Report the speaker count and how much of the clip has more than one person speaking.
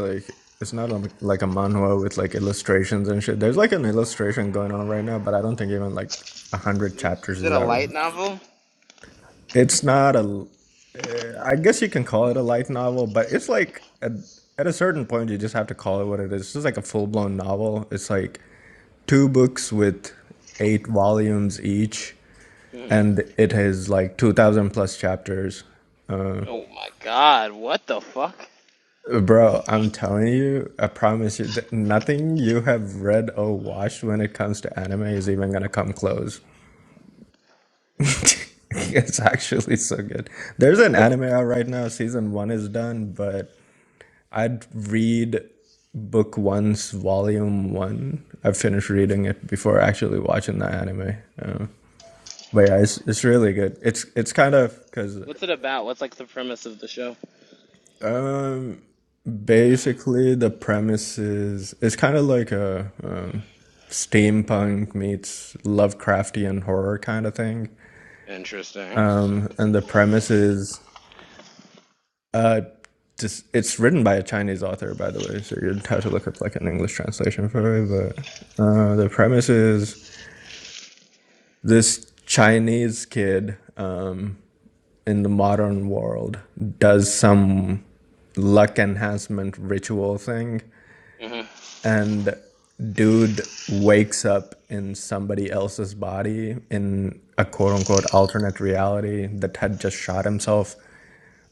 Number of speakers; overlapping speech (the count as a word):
two, about 1%